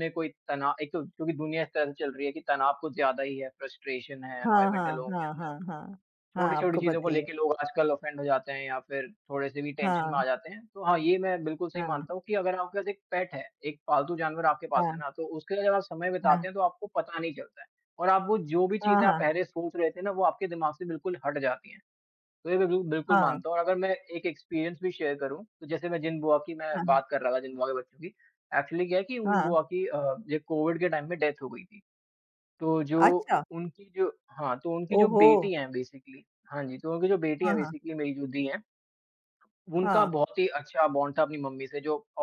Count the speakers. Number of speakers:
2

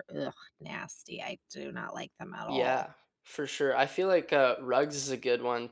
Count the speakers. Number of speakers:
2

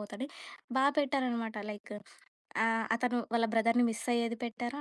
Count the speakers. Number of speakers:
1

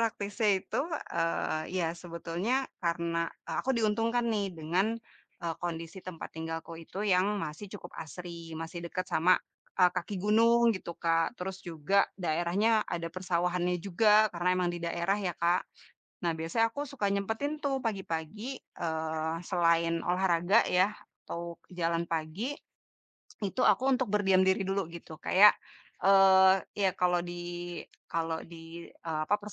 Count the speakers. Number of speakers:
1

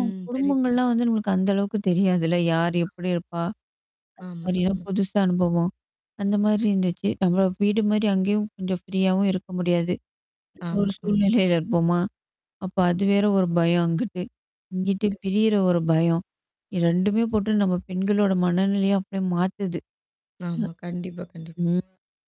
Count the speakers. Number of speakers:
2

